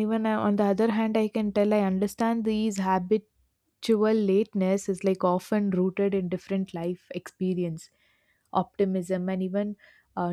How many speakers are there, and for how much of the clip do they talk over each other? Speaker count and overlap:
one, no overlap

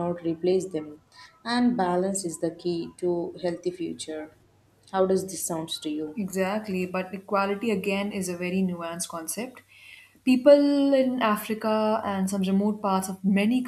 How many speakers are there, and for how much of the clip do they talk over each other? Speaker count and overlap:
two, no overlap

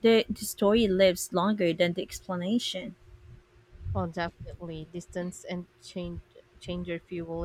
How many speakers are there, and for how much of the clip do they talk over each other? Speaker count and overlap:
two, no overlap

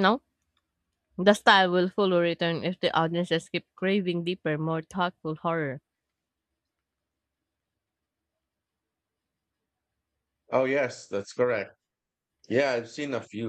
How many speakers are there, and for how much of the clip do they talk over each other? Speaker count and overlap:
two, no overlap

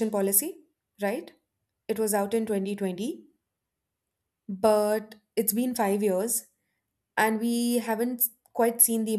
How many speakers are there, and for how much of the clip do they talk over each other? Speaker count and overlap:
one, no overlap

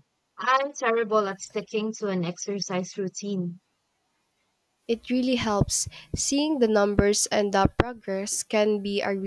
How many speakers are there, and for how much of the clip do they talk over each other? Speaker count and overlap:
two, no overlap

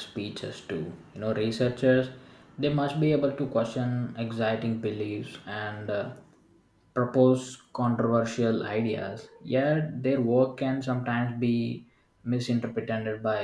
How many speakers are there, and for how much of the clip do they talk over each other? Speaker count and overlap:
one, no overlap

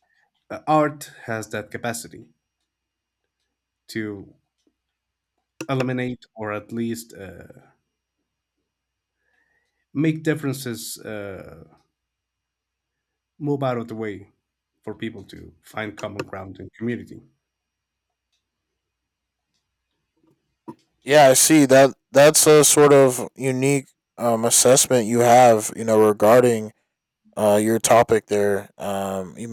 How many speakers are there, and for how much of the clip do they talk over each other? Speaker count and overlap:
two, no overlap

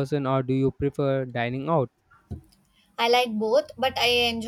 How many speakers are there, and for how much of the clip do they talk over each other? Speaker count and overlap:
two, no overlap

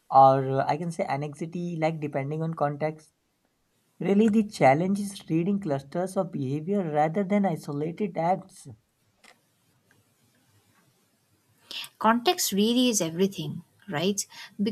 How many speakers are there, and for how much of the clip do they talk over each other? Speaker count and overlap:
two, no overlap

